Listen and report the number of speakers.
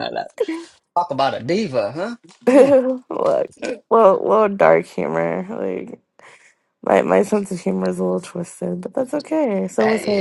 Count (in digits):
2